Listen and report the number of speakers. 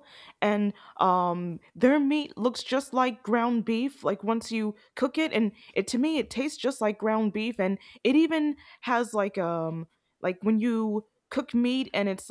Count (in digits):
1